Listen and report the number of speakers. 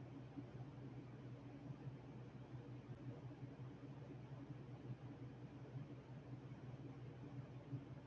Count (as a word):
zero